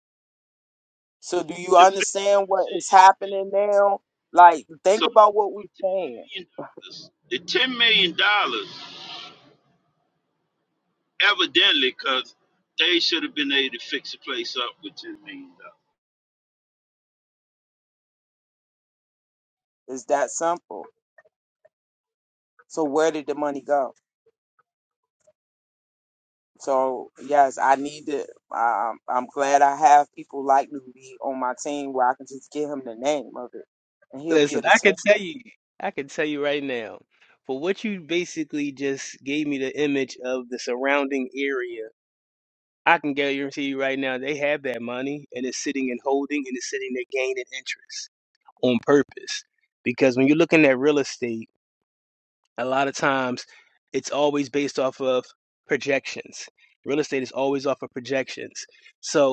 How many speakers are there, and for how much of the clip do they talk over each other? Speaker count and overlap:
3, about 3%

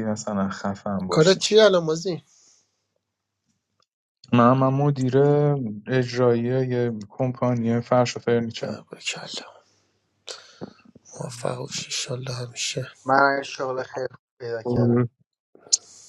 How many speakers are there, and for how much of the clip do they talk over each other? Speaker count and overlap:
3, about 5%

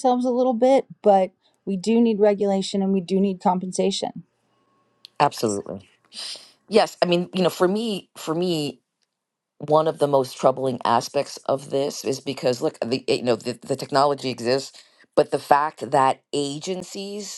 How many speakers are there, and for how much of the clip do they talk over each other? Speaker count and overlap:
2, no overlap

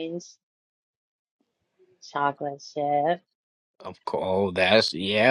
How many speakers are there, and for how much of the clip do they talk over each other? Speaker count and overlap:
2, no overlap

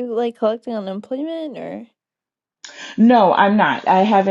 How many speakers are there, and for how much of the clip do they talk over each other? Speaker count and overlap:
2, no overlap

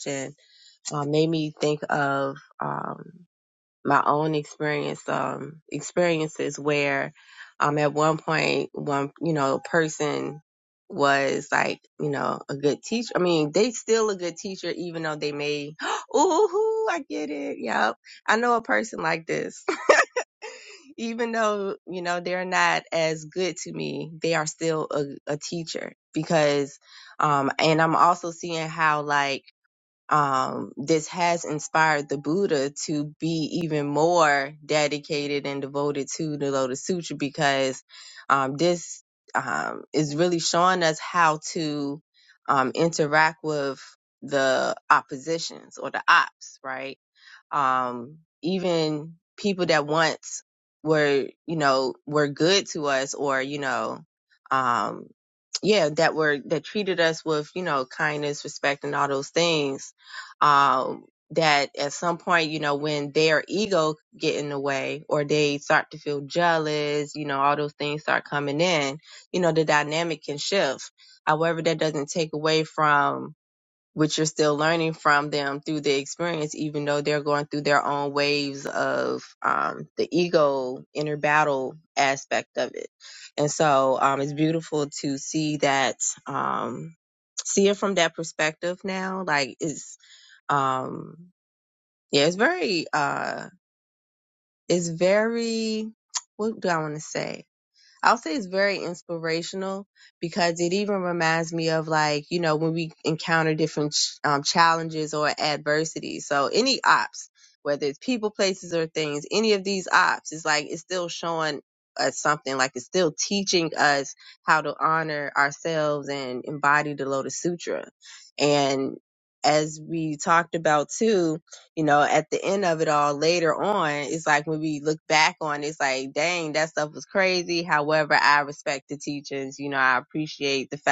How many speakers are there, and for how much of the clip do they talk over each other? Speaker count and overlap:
1, no overlap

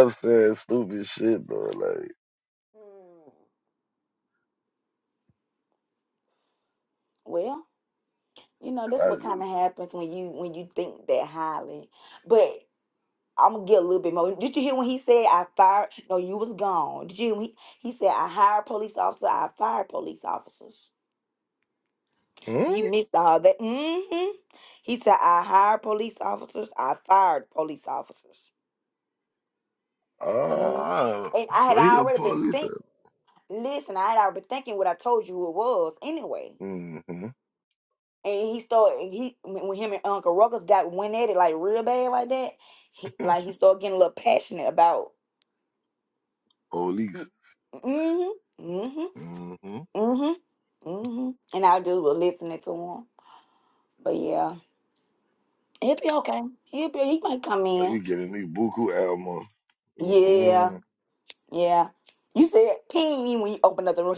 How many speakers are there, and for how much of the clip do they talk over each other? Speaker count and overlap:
2, about 5%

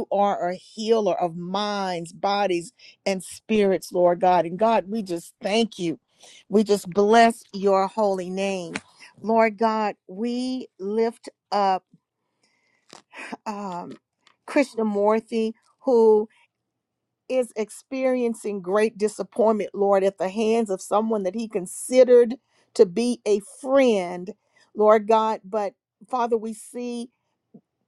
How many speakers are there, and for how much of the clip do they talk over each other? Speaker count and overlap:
1, no overlap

